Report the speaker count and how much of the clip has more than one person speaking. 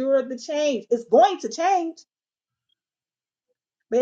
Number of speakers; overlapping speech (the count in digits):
1, no overlap